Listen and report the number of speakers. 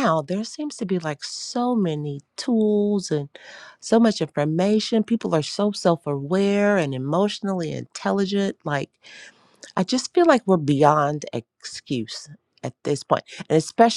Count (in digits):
1